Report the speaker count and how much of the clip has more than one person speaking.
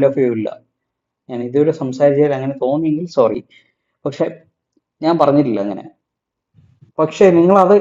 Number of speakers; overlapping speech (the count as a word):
one, no overlap